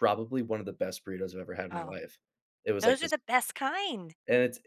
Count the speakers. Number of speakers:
2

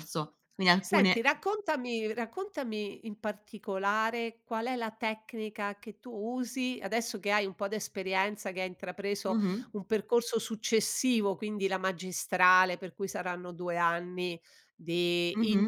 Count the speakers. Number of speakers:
2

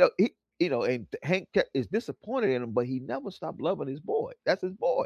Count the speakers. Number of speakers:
1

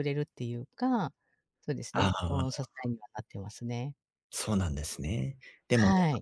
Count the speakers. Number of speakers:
2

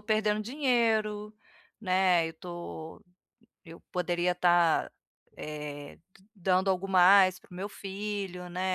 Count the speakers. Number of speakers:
1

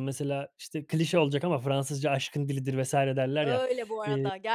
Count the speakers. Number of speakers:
2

